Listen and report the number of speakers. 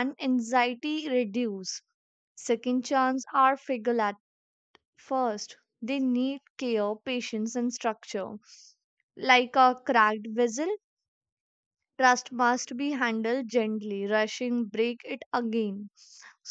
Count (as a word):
one